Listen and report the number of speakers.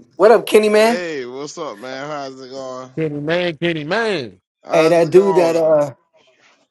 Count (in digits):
3